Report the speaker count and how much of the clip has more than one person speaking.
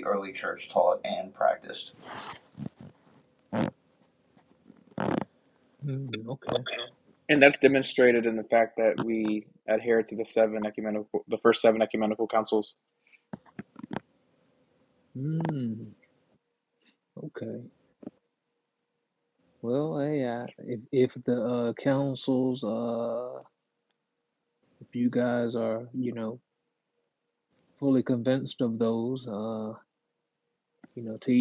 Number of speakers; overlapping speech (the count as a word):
three, no overlap